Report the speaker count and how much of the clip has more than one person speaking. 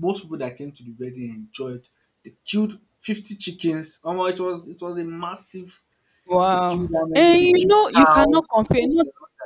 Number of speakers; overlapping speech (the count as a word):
two, about 24%